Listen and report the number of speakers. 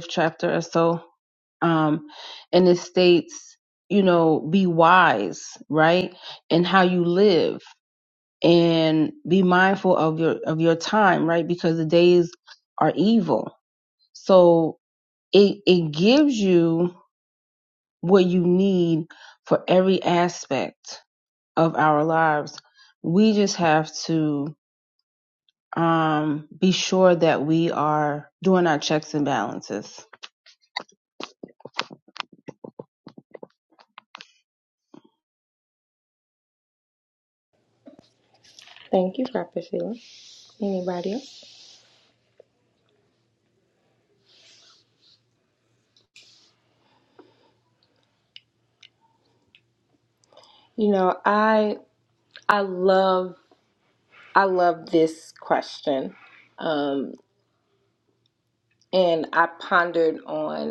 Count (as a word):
two